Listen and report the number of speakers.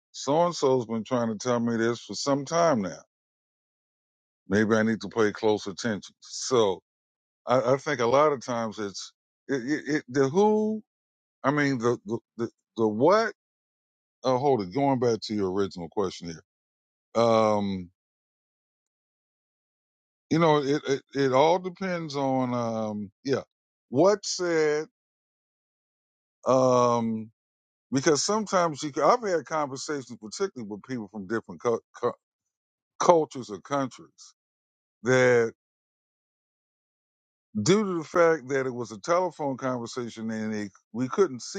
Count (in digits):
1